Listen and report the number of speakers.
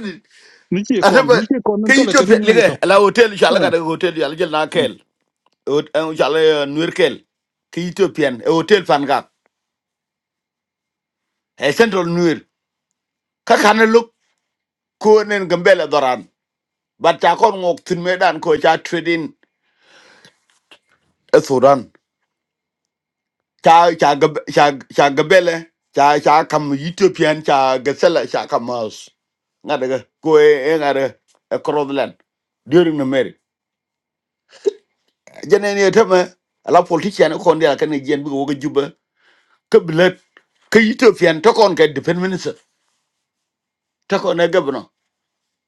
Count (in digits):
2